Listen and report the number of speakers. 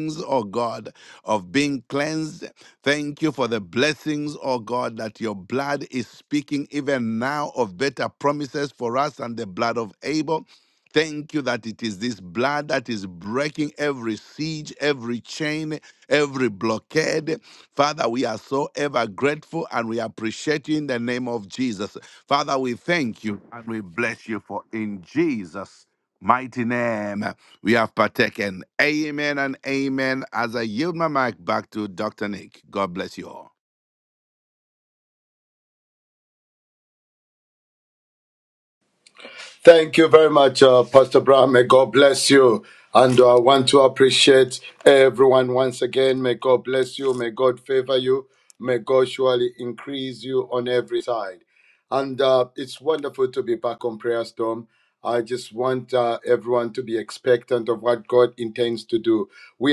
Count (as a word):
two